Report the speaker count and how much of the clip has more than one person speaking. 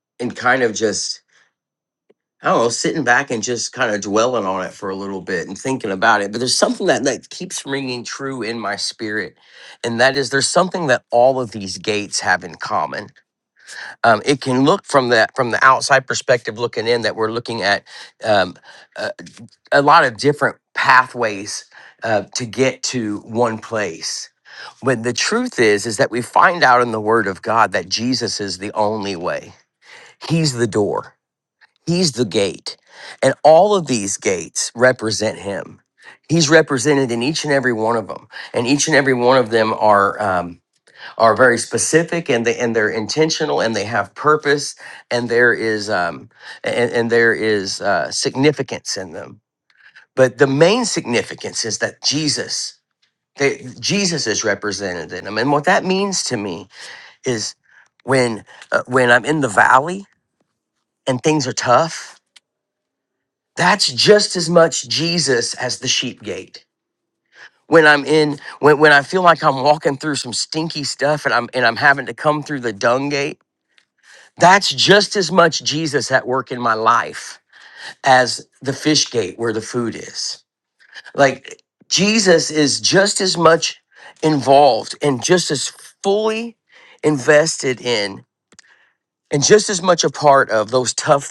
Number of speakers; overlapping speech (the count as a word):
one, no overlap